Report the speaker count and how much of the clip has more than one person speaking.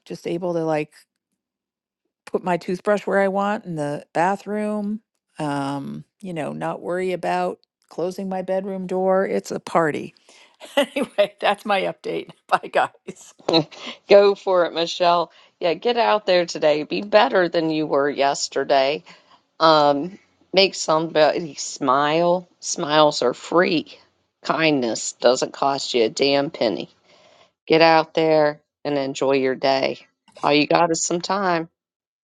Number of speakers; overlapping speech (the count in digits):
2, no overlap